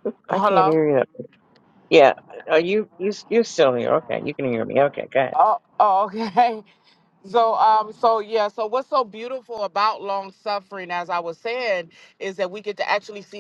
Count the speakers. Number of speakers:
two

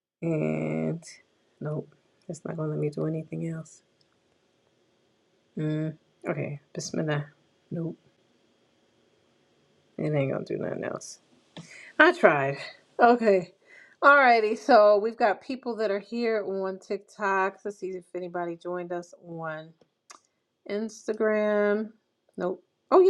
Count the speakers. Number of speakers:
one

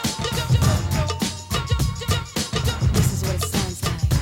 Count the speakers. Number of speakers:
zero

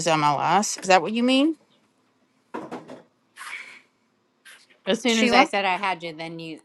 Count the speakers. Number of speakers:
two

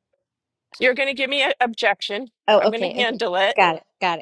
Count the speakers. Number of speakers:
two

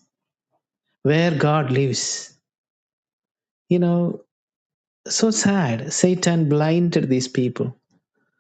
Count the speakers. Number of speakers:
one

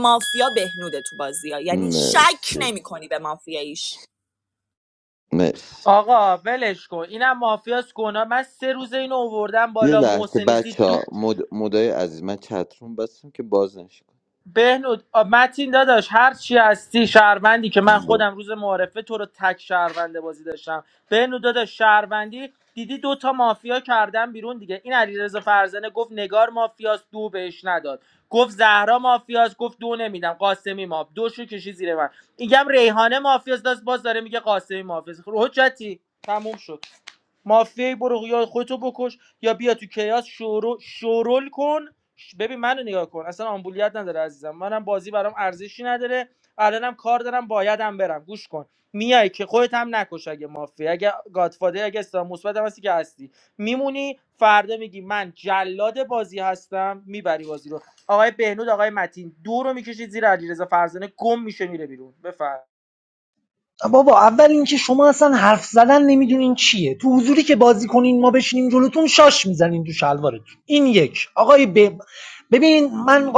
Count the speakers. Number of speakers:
four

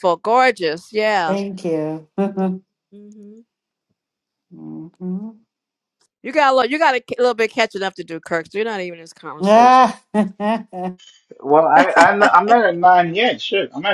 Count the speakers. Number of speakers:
three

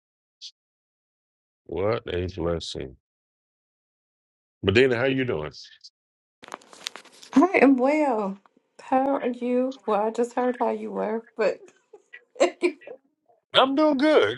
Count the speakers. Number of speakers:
two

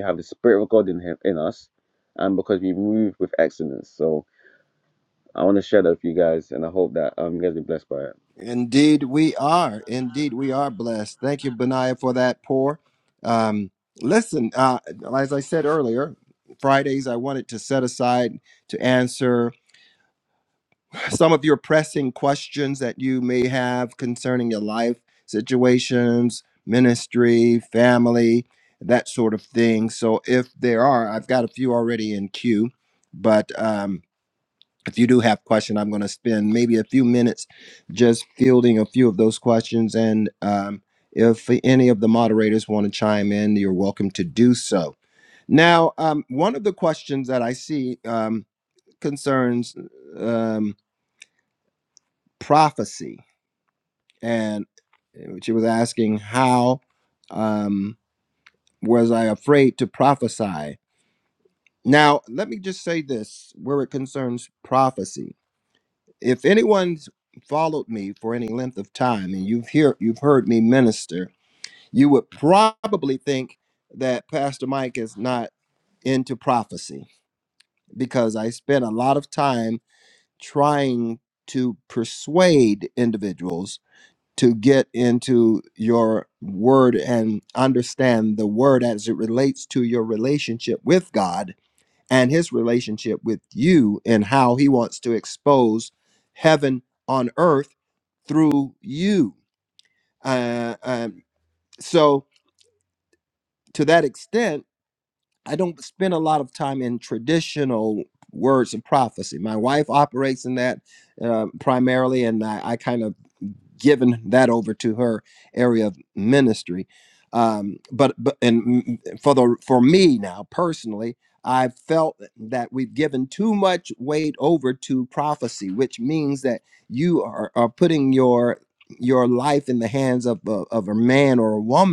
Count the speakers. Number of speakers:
two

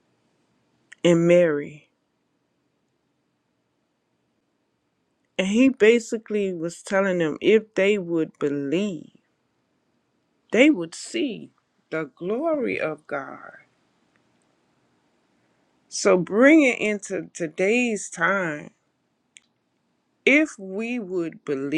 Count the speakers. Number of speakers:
one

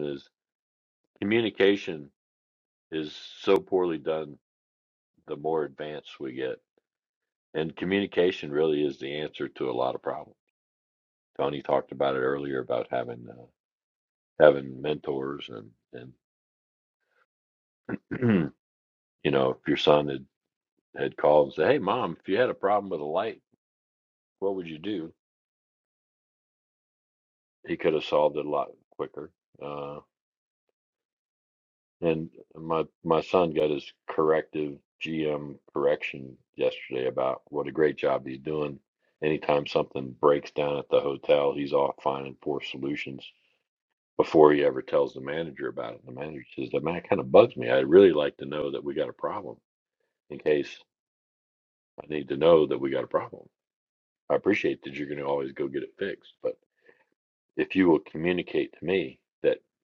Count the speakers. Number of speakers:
one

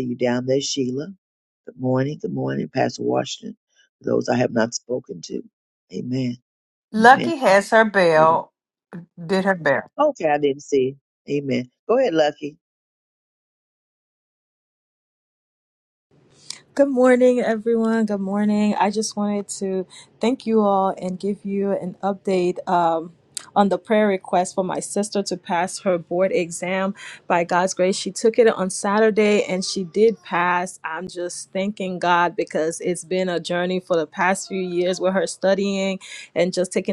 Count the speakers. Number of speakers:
three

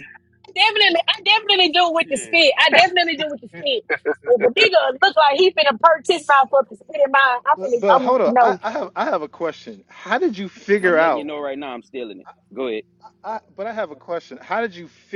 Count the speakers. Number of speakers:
three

